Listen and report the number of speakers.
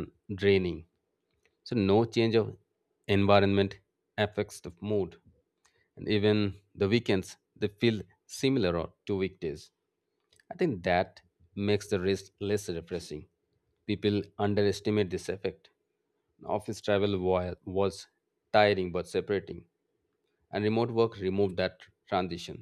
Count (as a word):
one